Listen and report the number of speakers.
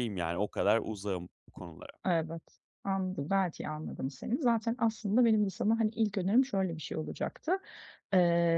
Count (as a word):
two